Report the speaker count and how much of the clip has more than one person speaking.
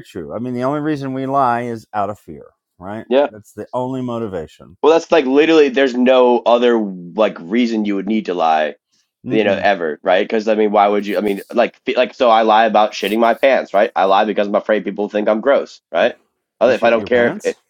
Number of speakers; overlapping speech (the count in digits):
2, about 7%